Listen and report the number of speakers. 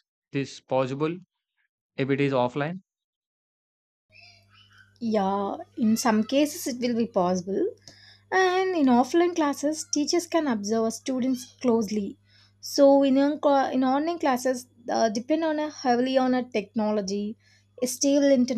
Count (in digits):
2